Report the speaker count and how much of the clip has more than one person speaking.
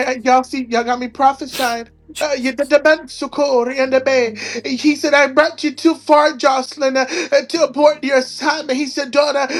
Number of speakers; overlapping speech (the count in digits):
1, no overlap